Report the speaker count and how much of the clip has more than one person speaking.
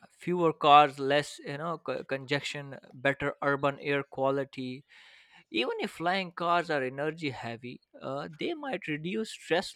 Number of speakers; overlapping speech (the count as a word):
one, no overlap